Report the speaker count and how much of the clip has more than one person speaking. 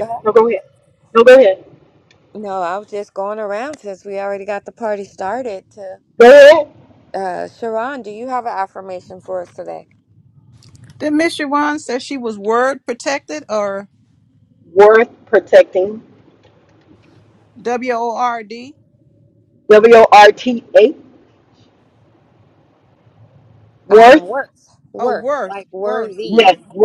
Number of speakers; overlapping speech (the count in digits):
3, about 8%